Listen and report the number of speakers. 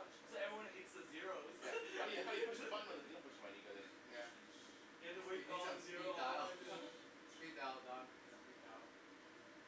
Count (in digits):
3